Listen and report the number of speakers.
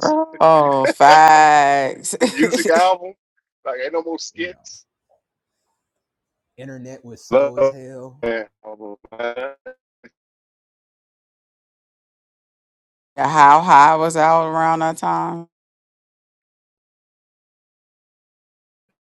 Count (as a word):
three